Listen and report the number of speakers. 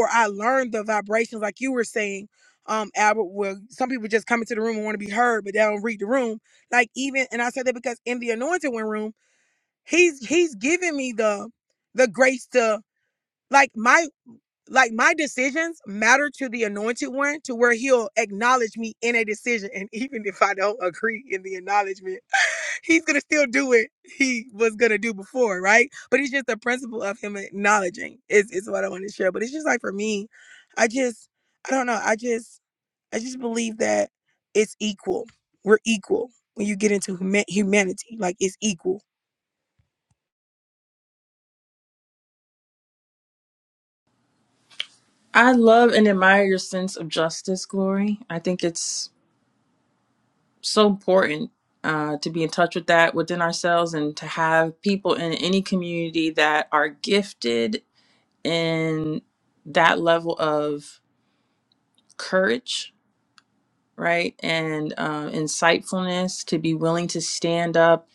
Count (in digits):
2